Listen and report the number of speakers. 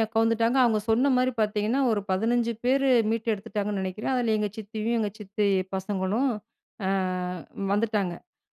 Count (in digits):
1